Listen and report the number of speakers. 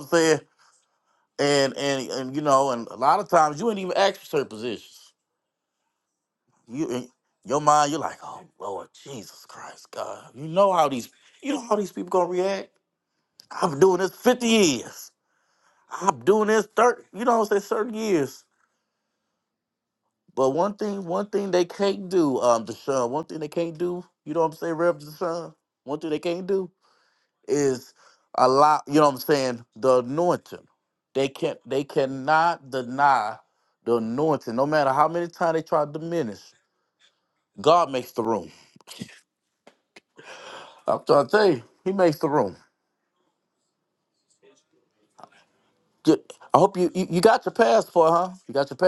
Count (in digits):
1